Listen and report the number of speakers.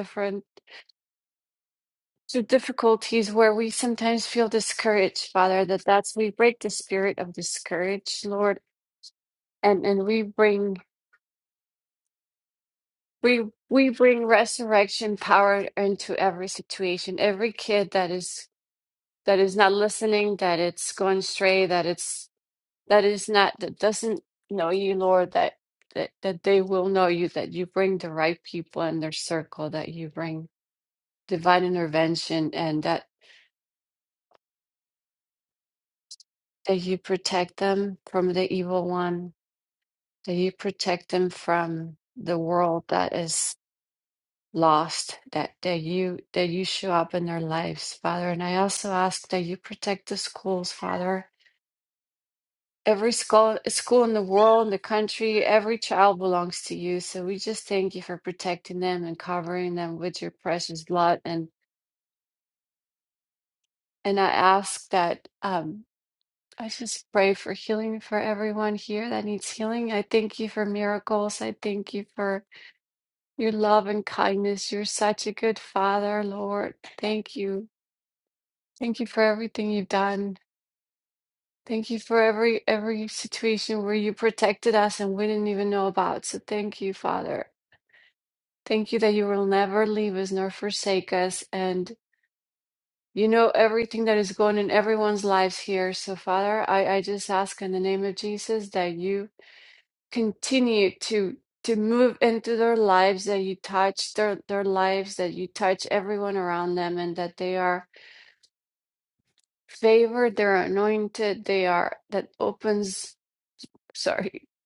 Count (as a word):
one